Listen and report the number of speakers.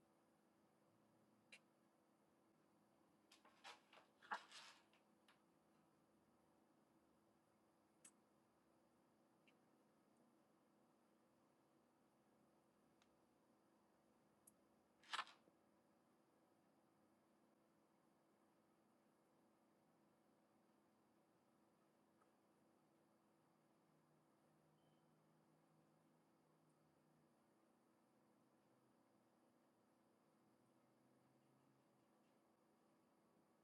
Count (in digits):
0